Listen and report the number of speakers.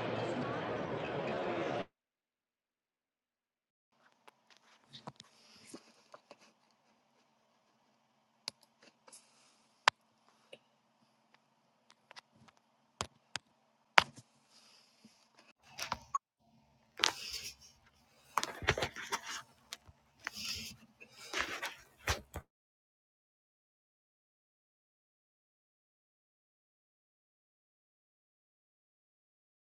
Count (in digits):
0